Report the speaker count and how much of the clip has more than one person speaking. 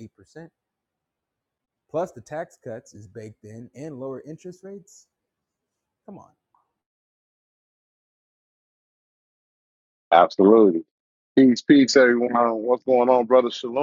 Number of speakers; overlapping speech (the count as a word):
two, no overlap